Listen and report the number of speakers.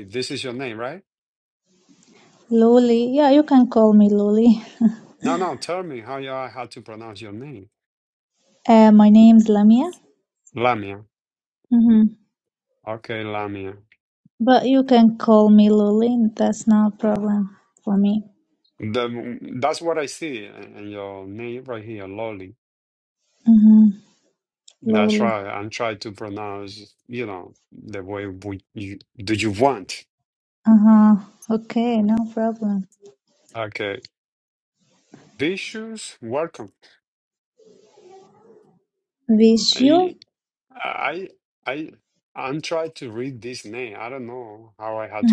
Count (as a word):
two